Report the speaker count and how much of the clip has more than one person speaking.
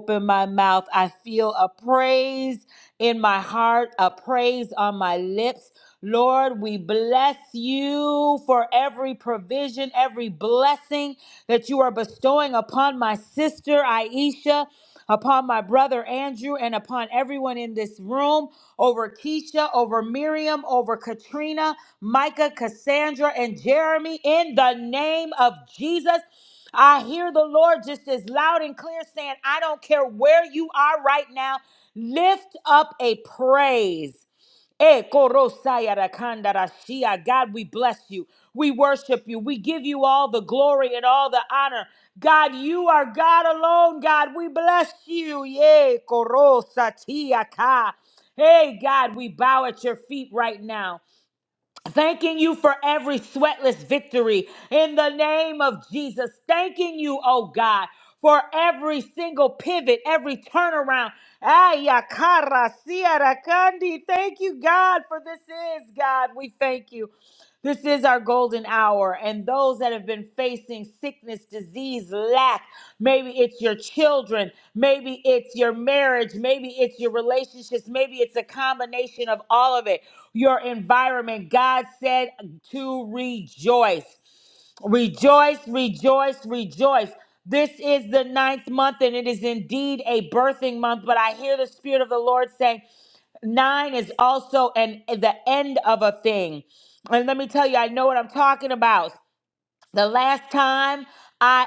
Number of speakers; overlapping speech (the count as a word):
one, no overlap